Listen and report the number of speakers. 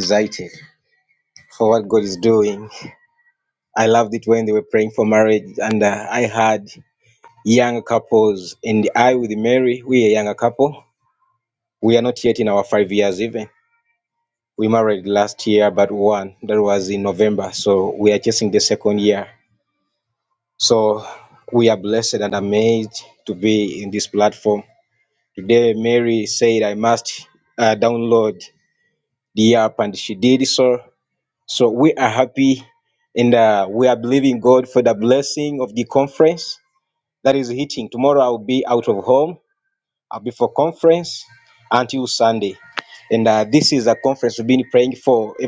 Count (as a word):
one